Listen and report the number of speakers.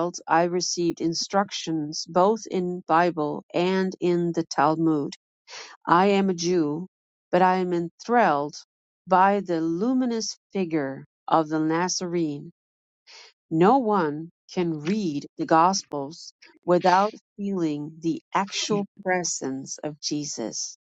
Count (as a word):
one